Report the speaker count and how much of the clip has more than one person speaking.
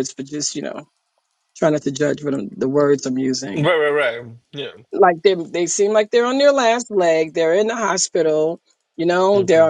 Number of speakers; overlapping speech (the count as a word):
two, about 5%